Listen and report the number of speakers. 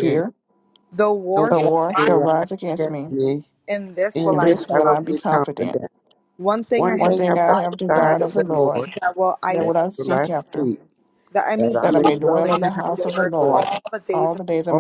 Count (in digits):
3